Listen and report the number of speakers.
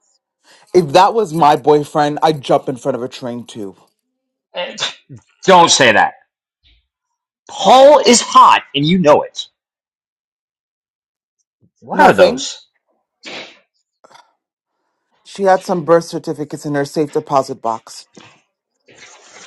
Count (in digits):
2